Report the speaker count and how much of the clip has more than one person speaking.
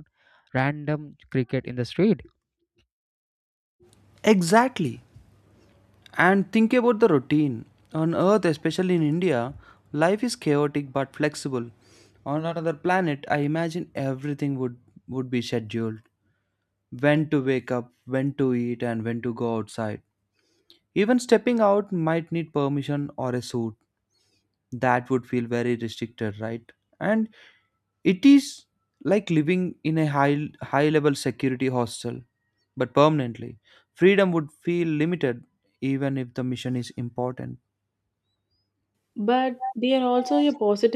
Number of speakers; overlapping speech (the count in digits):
3, no overlap